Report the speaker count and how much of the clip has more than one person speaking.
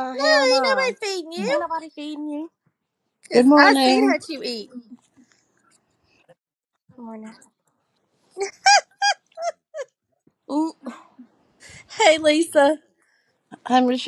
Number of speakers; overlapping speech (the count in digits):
3, about 12%